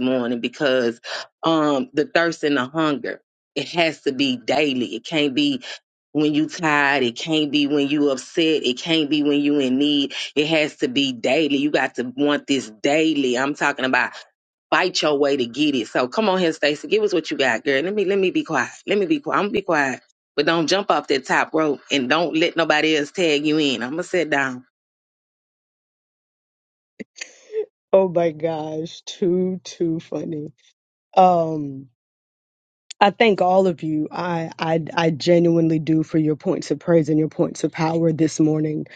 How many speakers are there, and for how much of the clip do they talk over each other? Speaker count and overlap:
2, no overlap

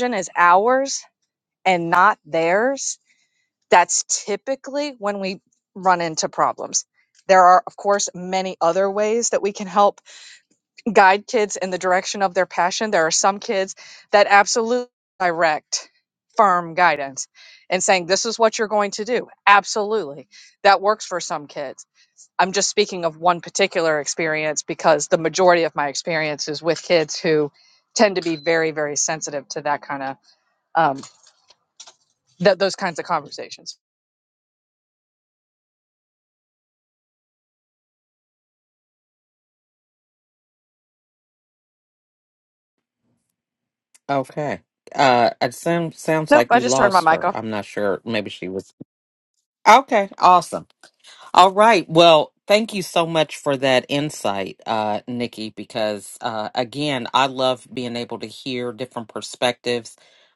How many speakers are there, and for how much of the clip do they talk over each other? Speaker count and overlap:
2, about 2%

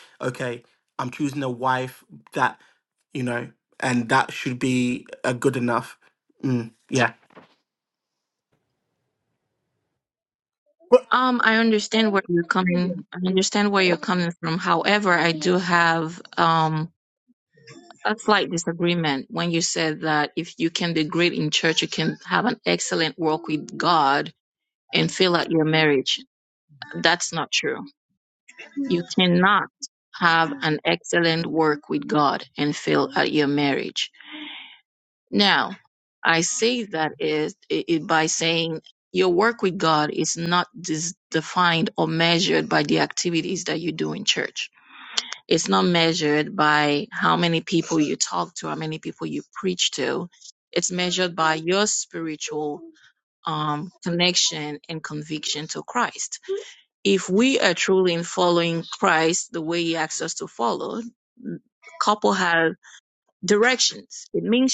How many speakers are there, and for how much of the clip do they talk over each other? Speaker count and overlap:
2, no overlap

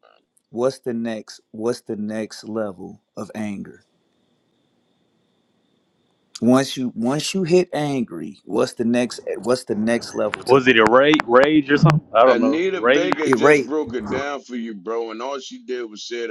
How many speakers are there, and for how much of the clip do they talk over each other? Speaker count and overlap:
3, about 10%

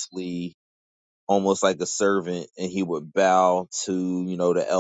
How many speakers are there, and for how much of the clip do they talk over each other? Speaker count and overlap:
1, no overlap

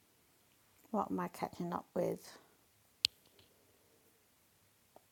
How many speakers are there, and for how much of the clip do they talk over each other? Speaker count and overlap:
1, no overlap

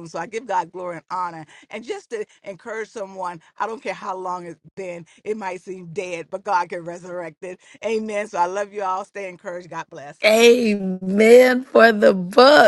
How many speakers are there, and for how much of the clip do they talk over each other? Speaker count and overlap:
2, no overlap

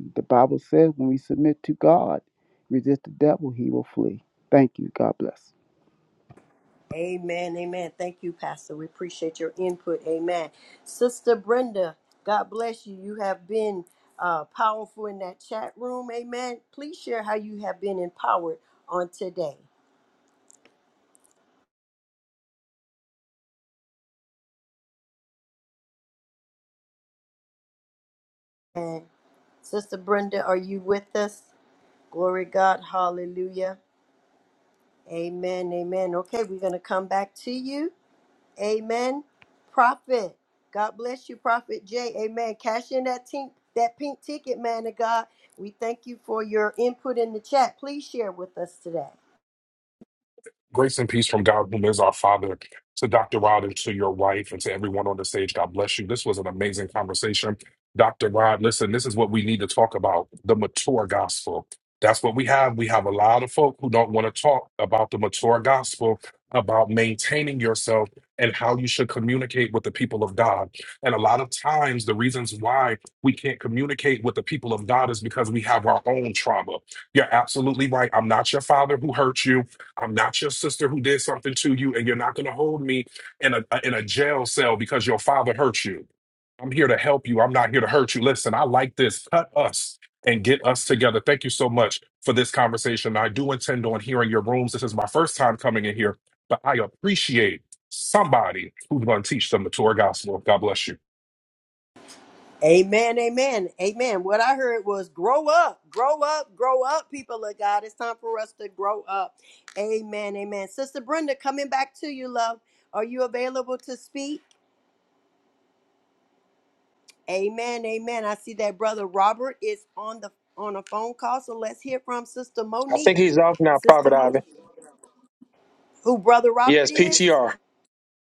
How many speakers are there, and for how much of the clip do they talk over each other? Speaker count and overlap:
4, about 1%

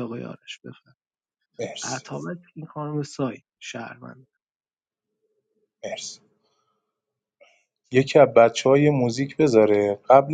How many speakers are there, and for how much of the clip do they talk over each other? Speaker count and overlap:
2, no overlap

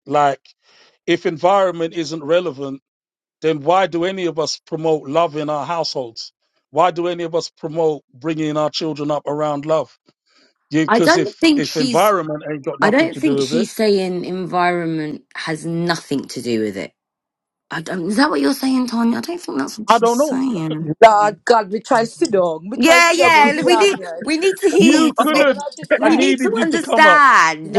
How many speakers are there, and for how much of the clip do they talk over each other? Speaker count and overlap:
3, about 22%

